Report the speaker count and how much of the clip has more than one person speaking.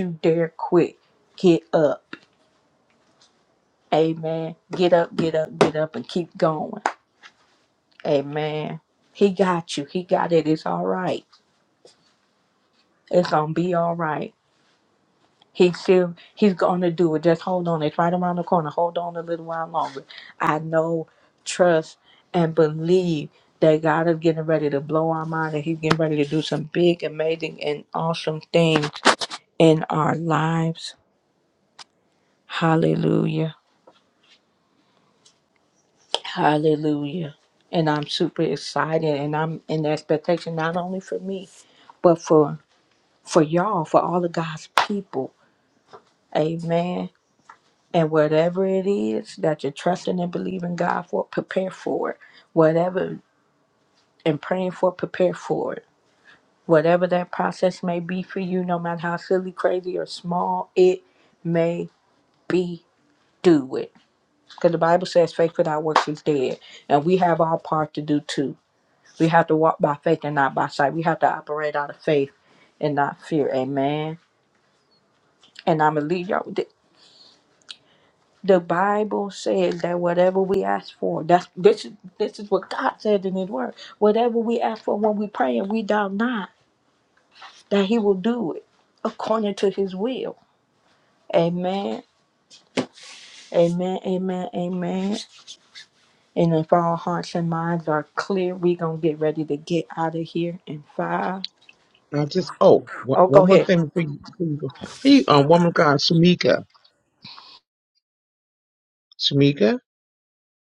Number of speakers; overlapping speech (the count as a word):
two, under 1%